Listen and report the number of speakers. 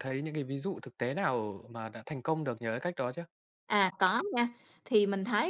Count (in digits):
2